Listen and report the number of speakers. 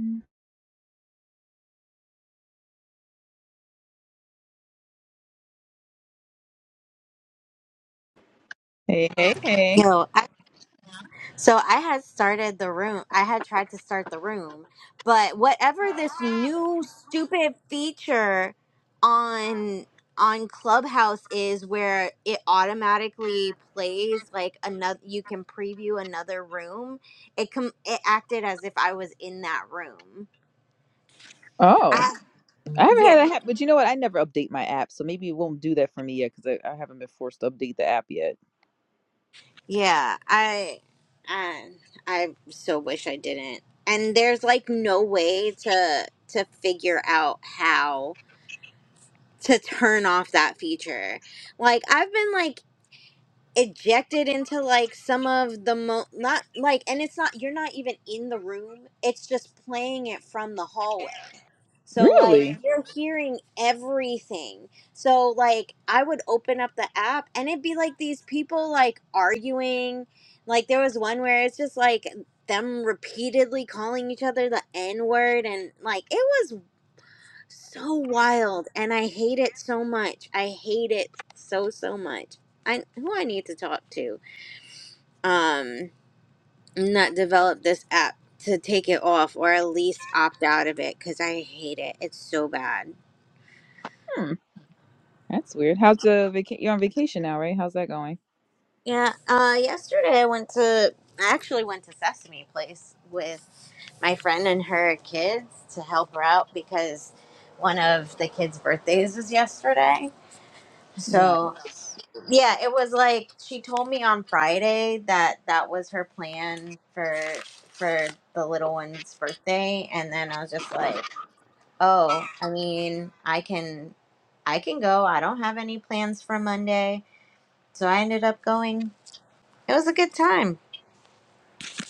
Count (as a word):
two